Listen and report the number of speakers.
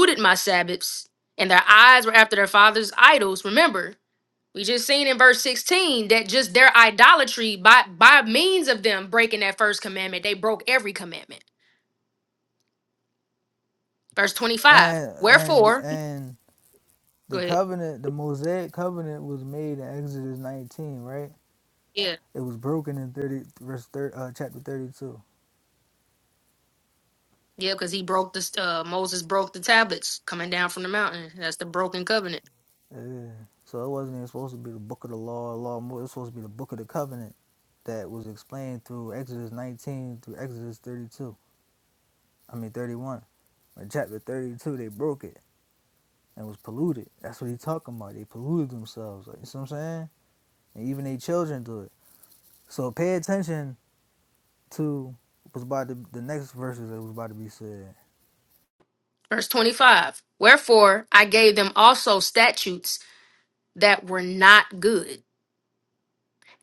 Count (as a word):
two